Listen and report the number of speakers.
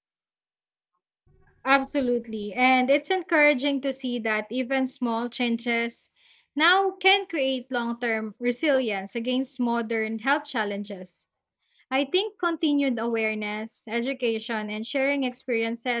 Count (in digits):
1